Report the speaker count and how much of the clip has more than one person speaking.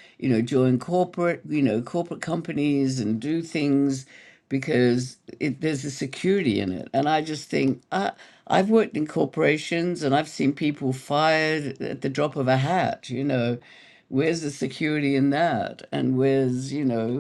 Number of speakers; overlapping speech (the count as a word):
one, no overlap